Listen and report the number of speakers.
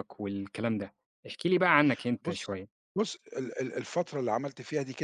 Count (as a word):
two